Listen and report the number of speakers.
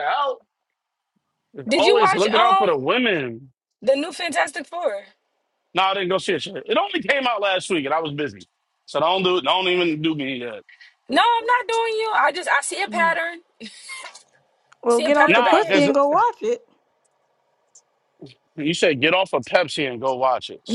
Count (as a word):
three